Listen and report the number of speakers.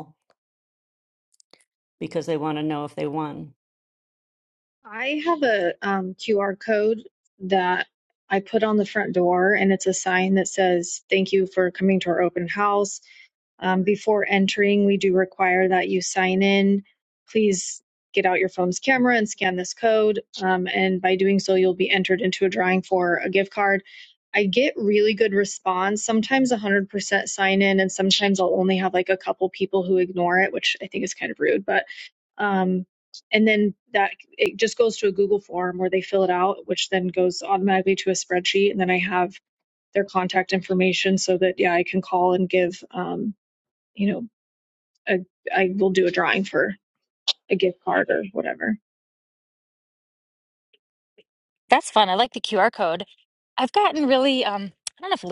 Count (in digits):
3